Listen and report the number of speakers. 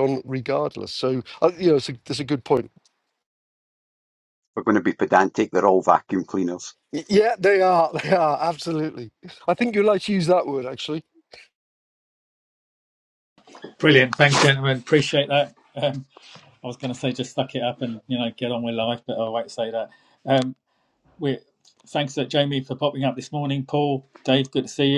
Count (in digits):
3